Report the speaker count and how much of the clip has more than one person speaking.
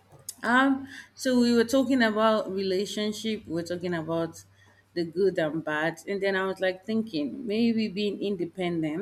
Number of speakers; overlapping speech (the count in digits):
1, no overlap